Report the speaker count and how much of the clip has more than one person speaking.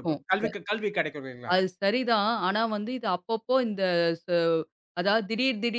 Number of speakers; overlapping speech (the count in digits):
2, about 2%